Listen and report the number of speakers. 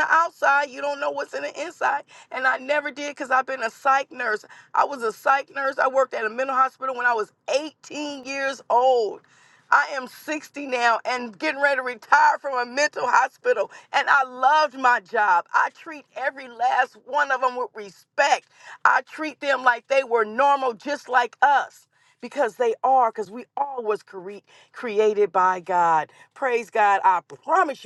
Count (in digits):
1